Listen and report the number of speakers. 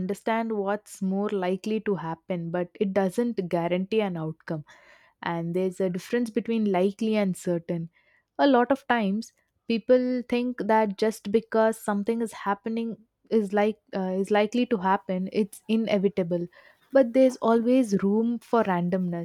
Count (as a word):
one